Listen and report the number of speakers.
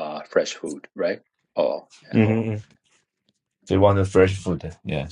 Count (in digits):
2